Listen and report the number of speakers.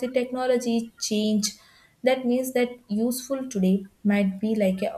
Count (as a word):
one